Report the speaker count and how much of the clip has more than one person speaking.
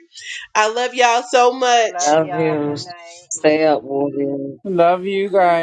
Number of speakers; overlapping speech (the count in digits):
4, about 17%